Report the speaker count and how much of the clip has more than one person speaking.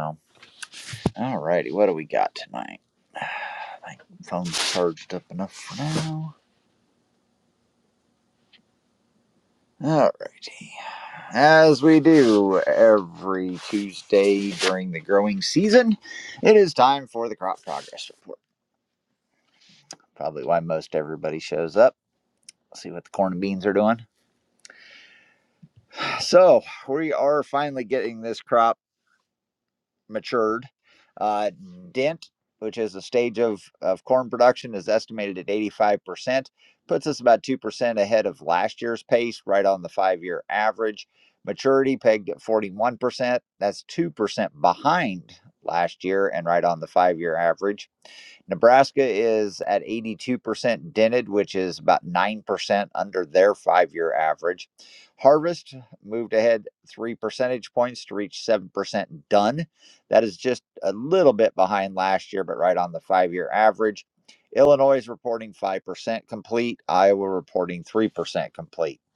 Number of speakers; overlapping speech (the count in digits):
1, no overlap